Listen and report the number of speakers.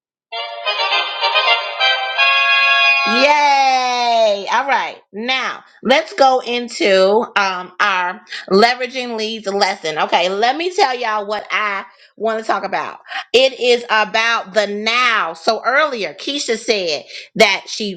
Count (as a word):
one